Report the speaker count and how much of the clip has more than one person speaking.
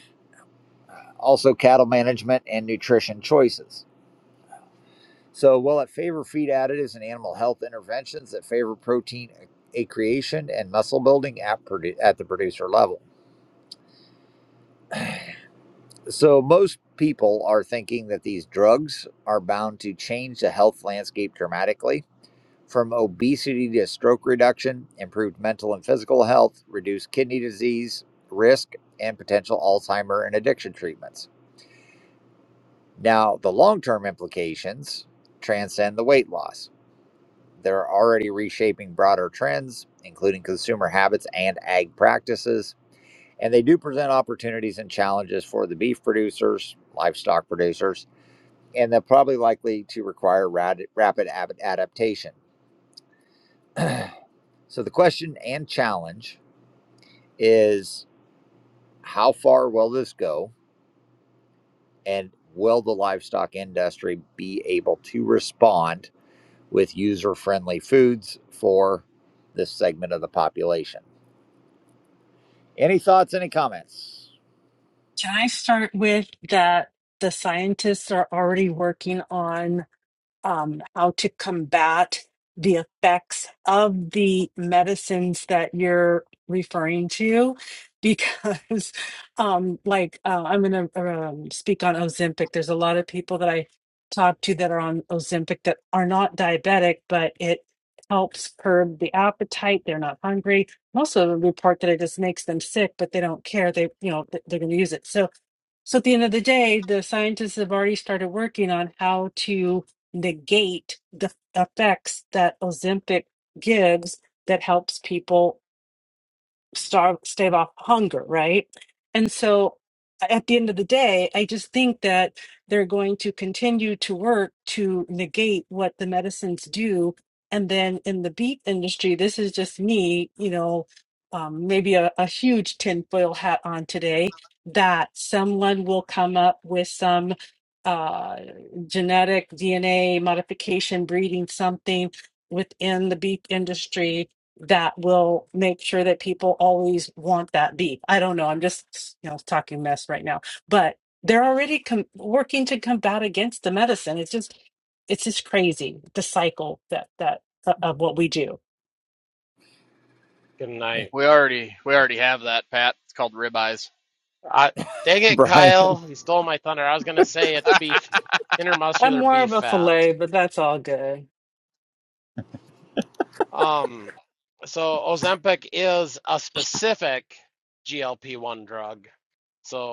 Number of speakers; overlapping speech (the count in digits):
4, about 1%